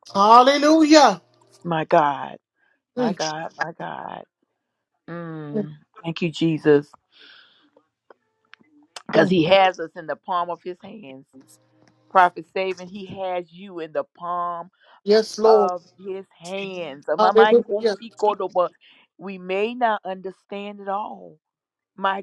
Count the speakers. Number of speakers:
two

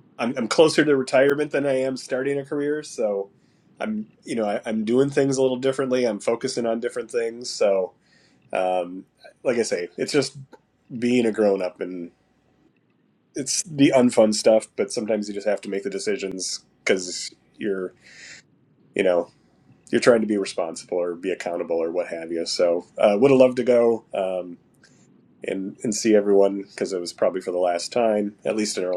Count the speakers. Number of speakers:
one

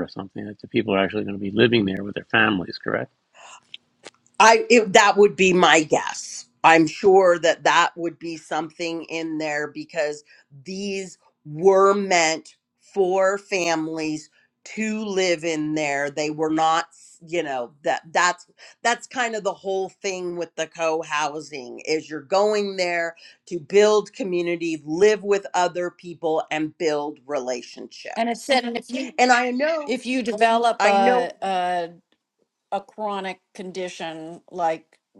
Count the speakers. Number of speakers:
three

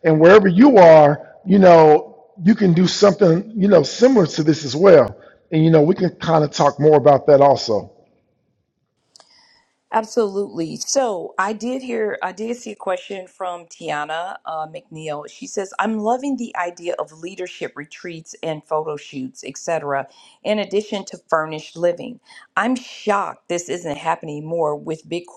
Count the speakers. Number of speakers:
two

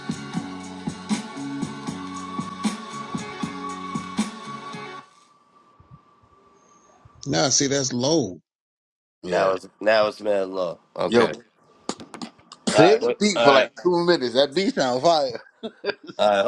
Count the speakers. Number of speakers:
three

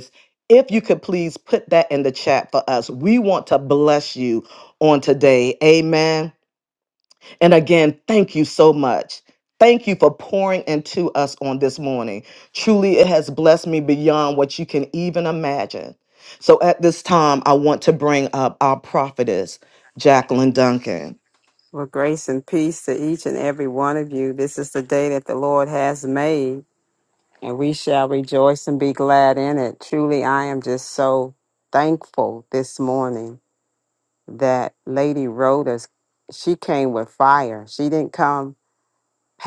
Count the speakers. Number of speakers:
two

